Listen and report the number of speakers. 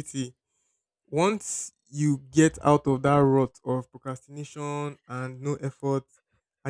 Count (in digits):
1